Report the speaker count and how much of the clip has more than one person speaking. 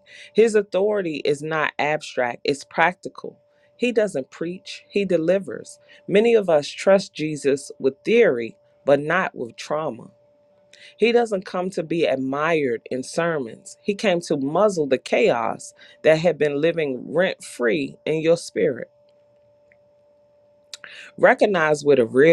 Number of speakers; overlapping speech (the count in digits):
1, no overlap